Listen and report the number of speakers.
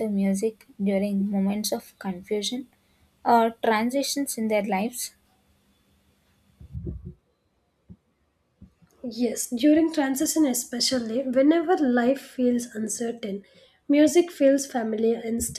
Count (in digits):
2